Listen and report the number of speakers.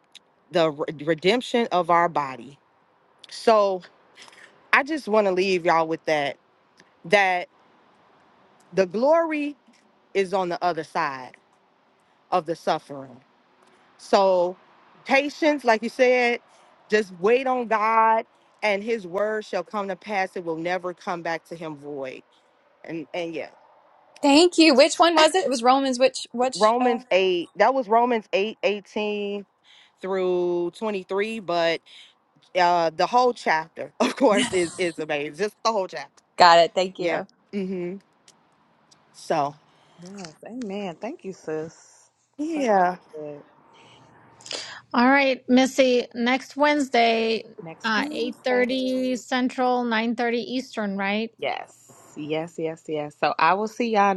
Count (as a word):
four